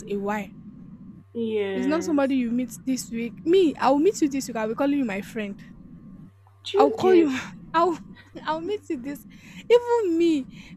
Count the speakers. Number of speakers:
2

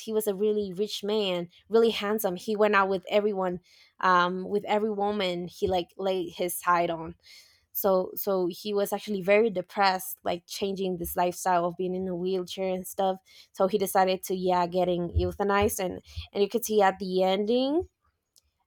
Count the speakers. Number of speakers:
1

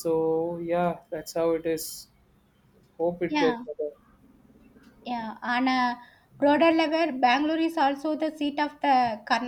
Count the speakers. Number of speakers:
2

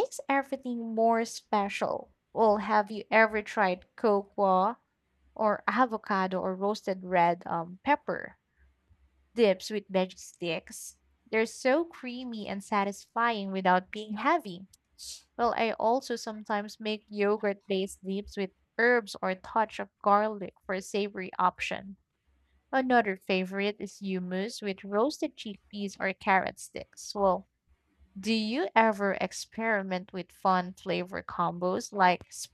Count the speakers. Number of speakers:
1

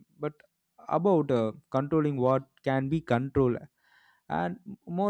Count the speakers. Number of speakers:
1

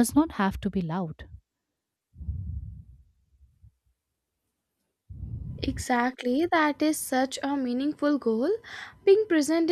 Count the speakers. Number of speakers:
2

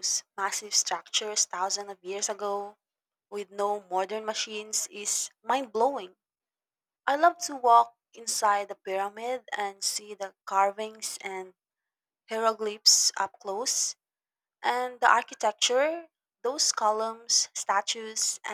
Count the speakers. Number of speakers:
1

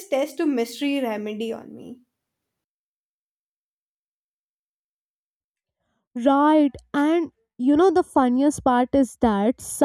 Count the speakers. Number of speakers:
2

